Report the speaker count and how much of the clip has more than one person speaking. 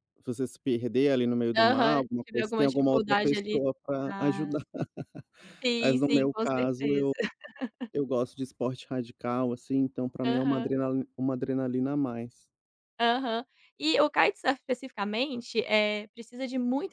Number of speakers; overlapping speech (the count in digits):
2, about 25%